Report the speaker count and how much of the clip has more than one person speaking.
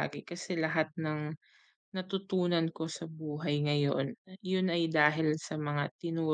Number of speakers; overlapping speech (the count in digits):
1, no overlap